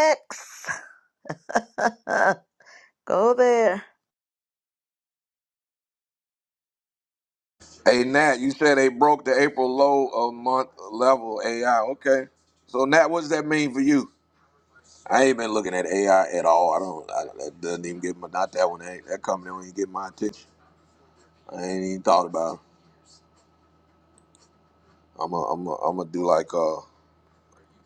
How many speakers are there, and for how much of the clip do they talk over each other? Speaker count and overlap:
2, no overlap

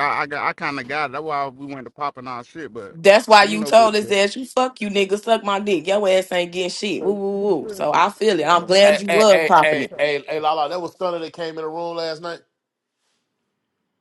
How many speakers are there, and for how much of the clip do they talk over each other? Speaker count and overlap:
3, about 21%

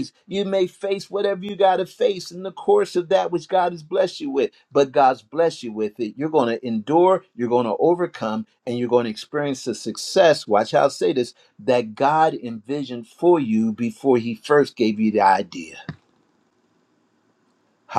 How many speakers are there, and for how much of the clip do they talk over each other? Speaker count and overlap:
1, no overlap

